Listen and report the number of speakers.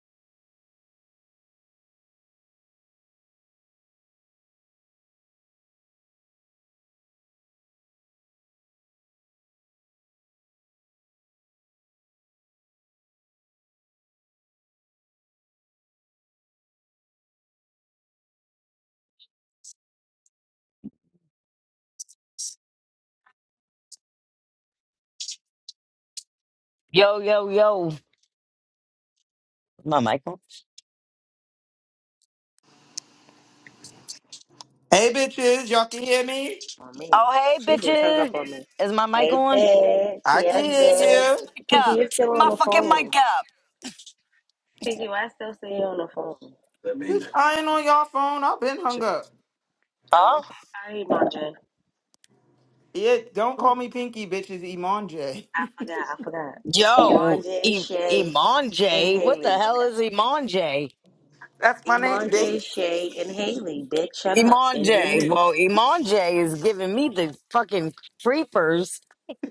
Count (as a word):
three